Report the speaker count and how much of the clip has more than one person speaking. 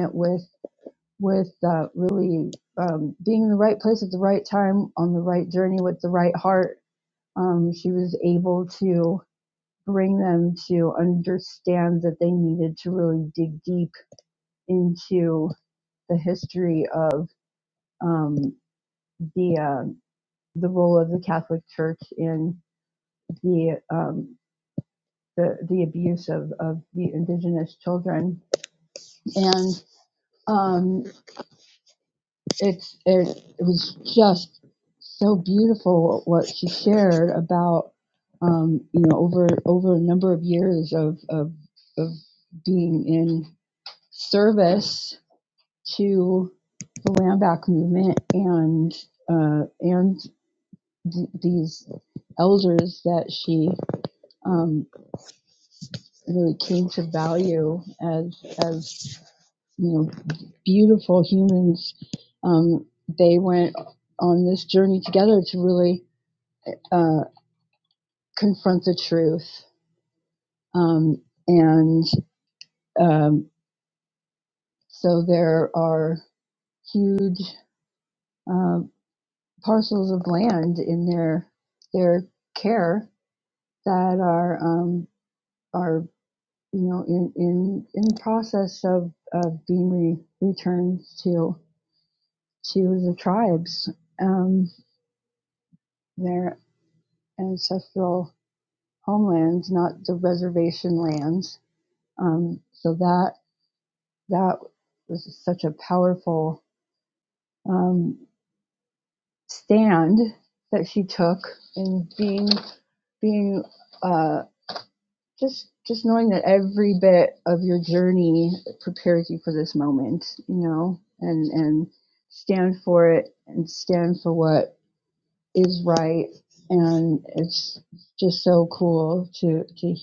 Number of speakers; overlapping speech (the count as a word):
one, no overlap